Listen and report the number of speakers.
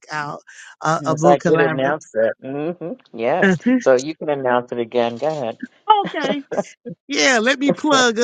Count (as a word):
two